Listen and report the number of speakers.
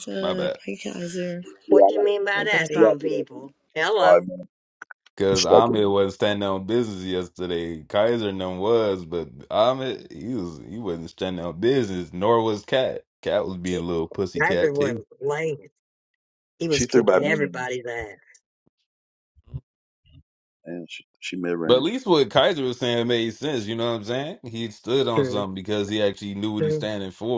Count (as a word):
four